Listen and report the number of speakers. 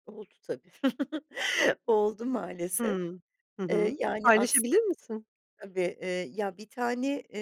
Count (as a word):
two